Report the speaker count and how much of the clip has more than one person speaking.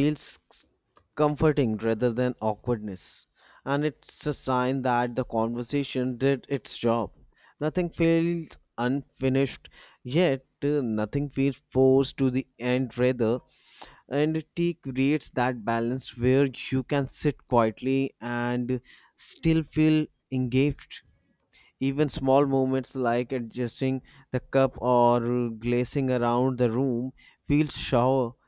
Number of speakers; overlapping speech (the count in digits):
1, no overlap